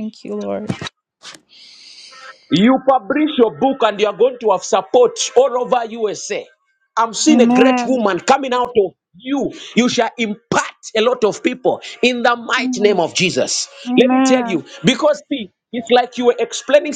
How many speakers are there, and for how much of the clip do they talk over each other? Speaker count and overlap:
2, about 11%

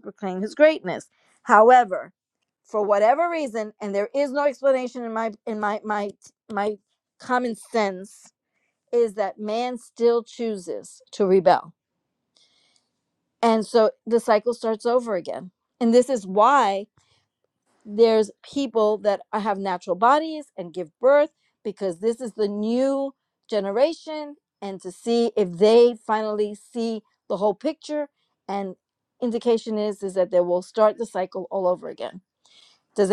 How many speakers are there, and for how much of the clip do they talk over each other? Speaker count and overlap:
1, no overlap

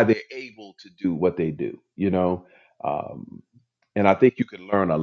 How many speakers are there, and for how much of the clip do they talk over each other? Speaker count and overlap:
1, no overlap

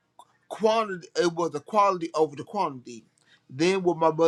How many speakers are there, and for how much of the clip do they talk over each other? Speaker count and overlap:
1, no overlap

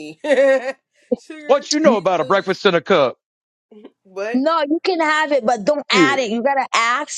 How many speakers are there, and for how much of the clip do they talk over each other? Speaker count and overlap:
3, about 18%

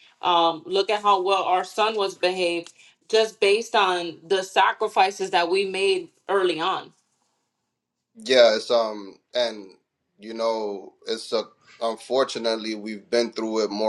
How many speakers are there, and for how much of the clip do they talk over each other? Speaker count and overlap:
2, no overlap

